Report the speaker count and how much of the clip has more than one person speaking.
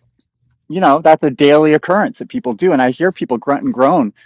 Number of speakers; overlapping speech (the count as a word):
one, no overlap